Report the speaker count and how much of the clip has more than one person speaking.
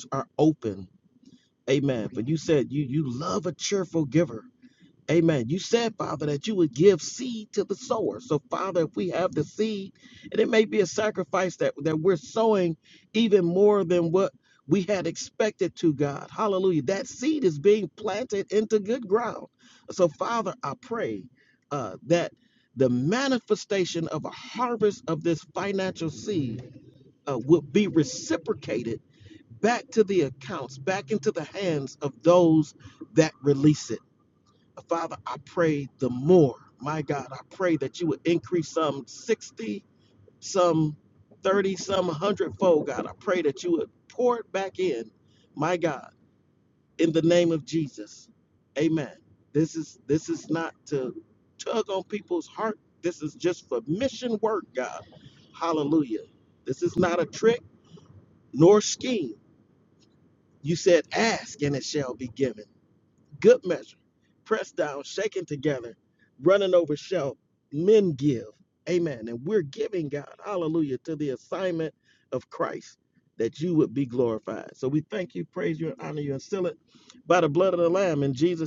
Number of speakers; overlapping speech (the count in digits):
1, no overlap